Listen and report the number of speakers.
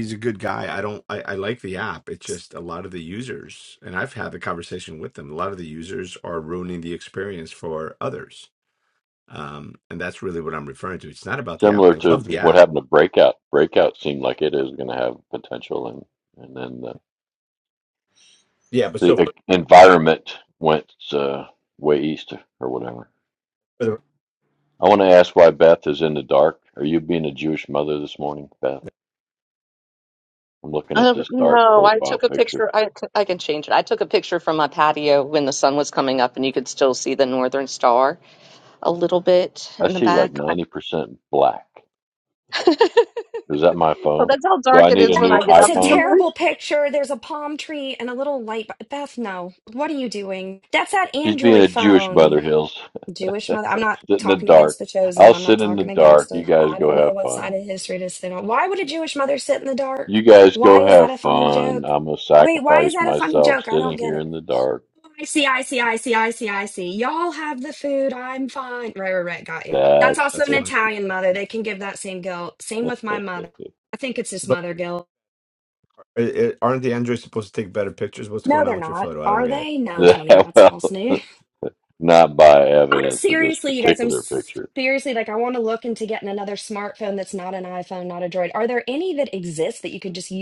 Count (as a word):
four